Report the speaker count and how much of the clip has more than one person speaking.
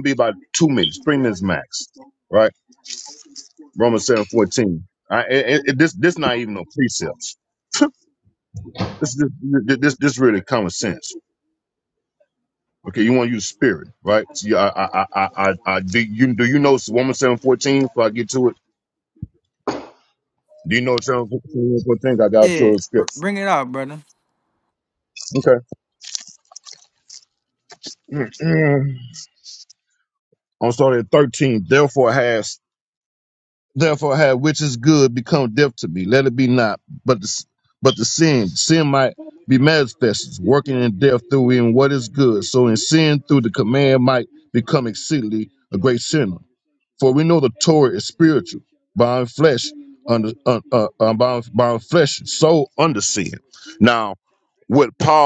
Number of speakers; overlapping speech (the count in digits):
2, about 1%